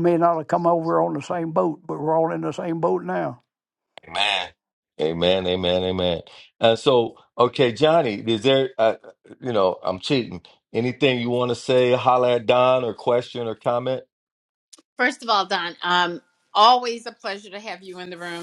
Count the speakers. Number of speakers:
3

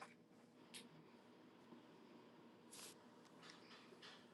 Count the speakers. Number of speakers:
0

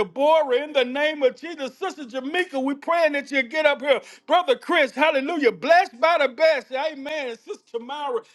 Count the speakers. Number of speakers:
1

